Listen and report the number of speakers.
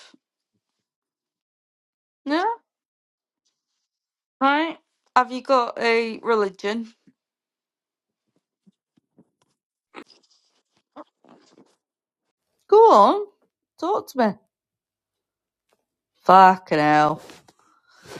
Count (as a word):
one